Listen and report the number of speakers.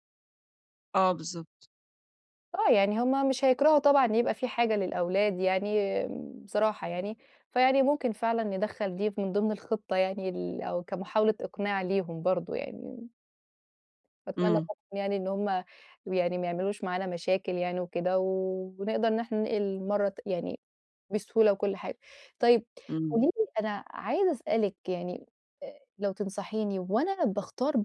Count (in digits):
2